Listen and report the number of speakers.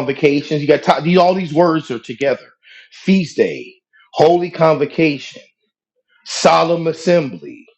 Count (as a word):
one